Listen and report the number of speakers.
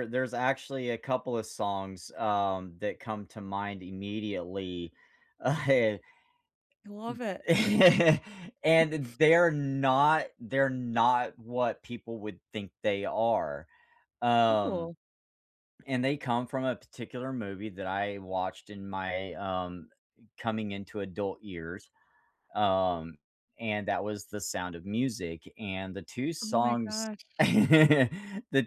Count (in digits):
2